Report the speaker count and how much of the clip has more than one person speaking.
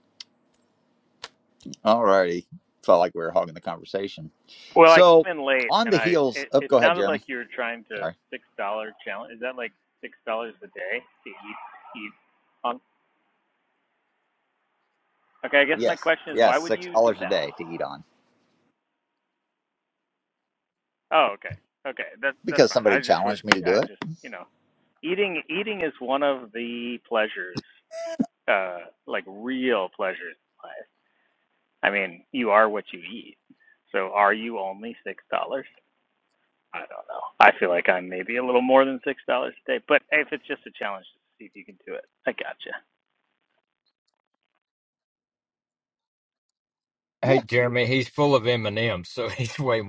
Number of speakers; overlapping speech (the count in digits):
3, about 10%